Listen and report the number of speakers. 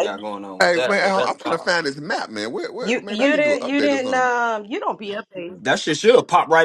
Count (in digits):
3